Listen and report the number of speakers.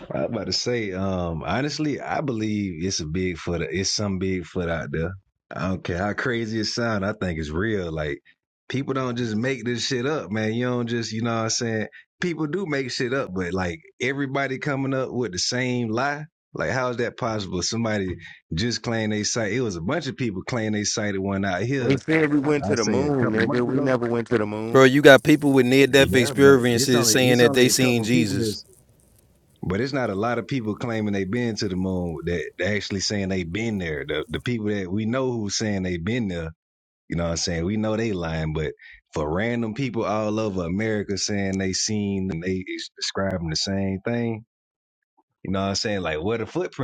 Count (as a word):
three